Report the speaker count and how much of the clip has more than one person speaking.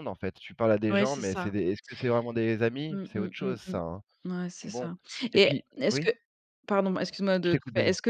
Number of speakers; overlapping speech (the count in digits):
2, about 37%